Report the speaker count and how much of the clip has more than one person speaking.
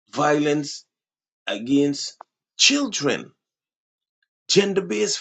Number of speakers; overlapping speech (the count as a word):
one, no overlap